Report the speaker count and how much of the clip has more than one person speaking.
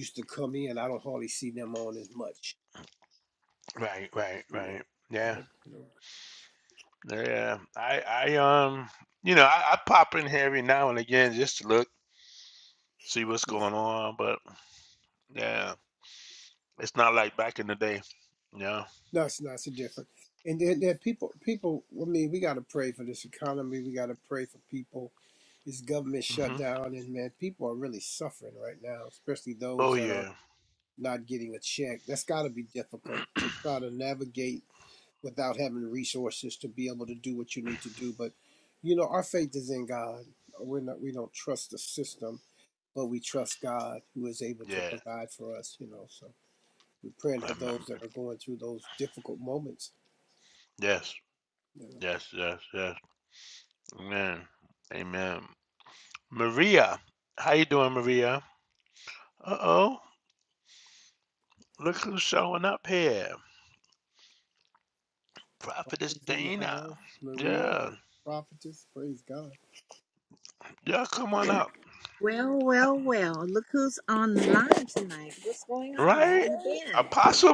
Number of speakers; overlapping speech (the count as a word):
three, about 5%